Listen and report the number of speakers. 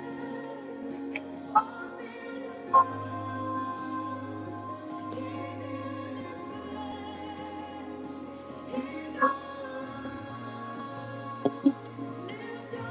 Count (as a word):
zero